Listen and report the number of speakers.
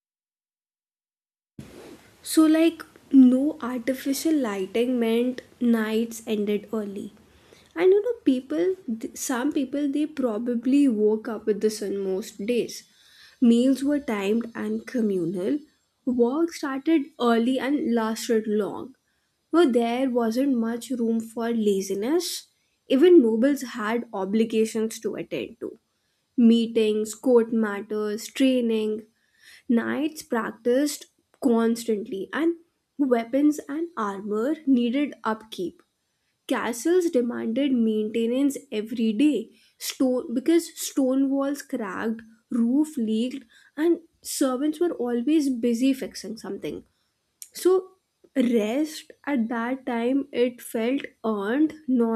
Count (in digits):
1